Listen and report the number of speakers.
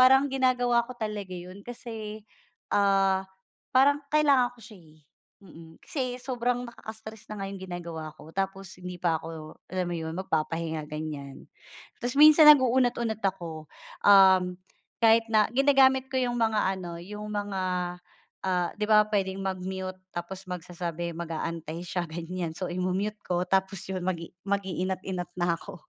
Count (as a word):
one